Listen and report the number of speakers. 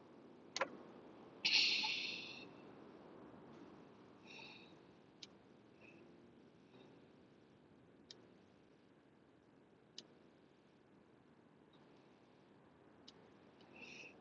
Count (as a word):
zero